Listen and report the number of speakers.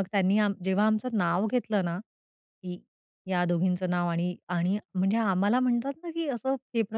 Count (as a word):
one